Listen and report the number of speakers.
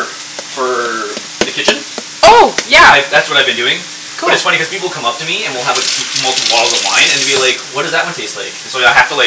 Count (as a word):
two